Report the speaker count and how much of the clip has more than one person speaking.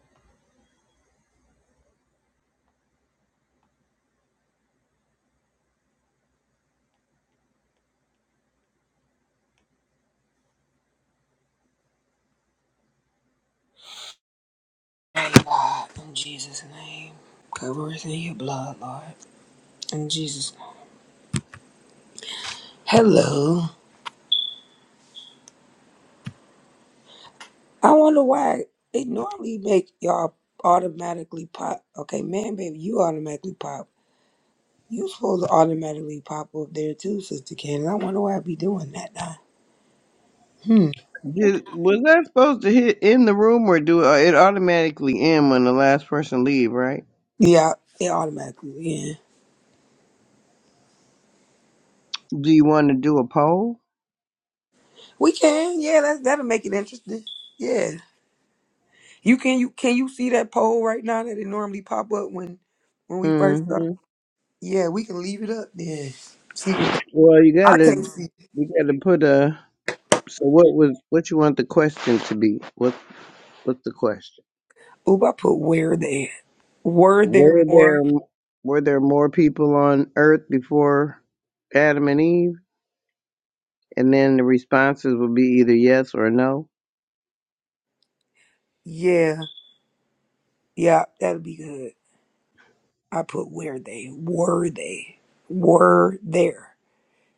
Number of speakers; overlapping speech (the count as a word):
two, about 2%